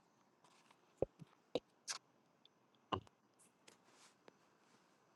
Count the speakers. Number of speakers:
0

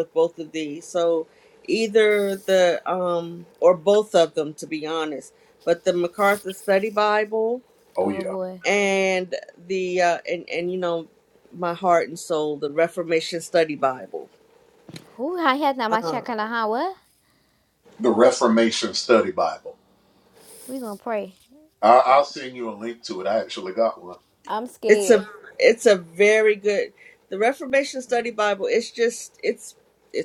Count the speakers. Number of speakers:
3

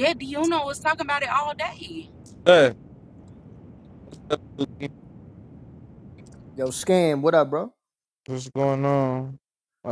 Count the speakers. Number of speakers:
3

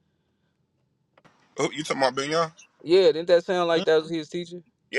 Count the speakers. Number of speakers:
2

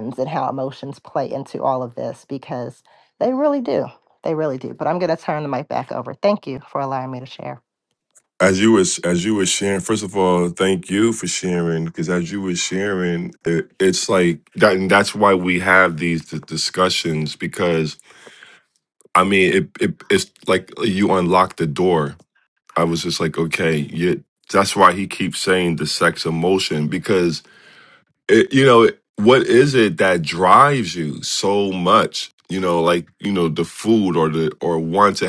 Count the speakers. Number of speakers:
2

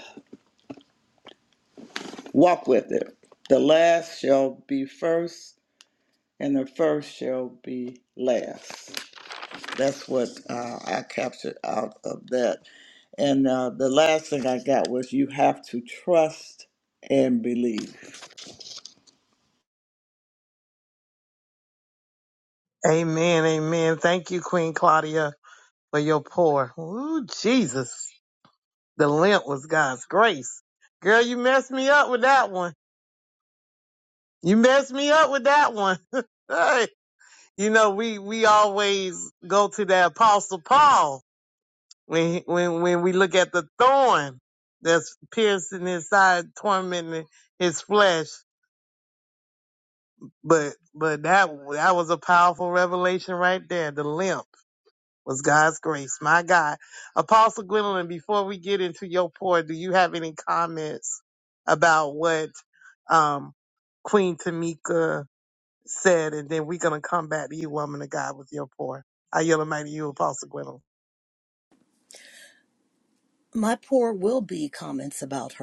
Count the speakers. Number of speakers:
3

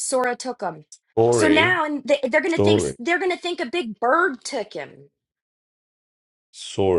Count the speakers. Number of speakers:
2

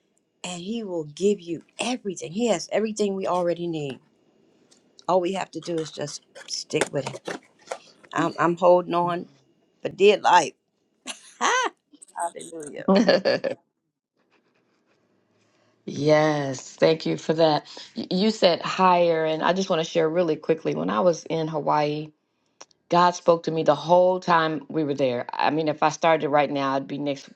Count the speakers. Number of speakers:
2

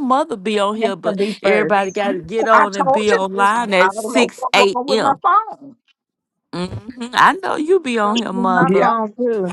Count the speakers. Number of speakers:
3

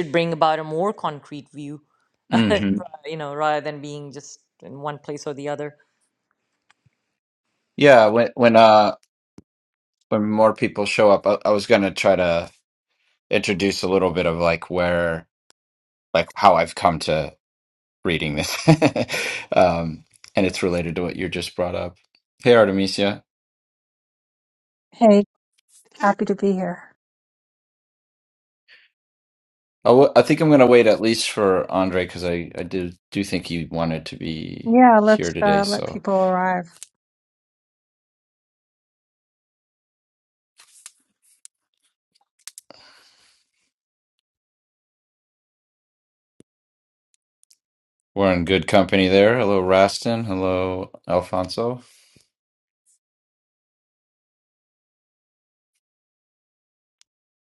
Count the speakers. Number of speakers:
3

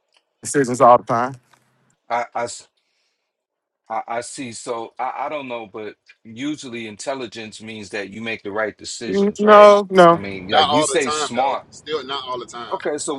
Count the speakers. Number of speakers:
3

